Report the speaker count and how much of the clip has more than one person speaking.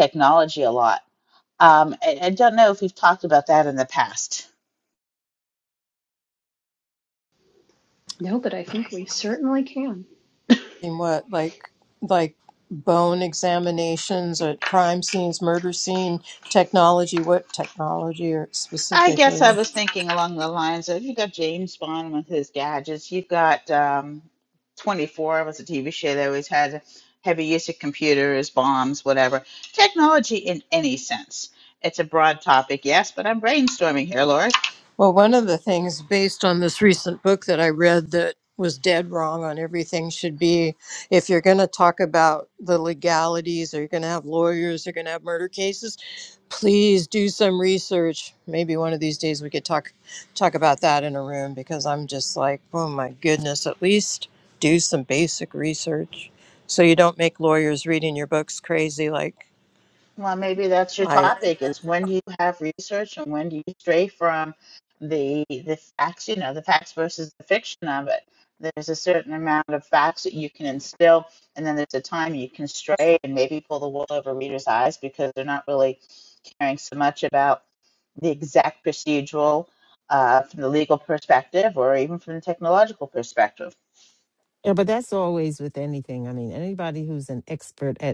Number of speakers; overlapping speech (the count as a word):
four, about 1%